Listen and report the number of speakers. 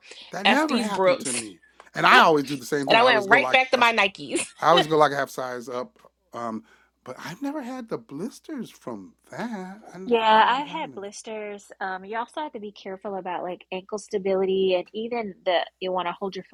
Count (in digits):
3